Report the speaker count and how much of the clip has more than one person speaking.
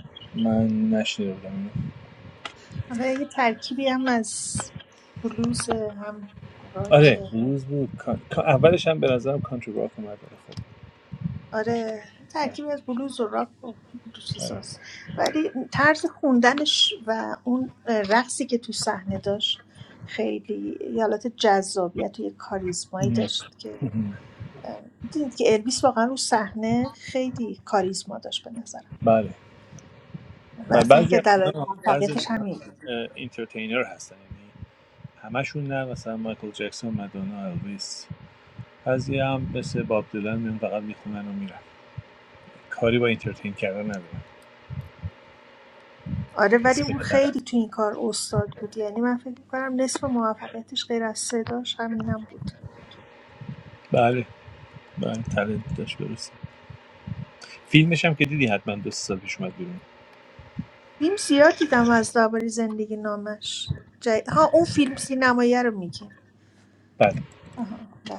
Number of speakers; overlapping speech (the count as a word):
two, about 5%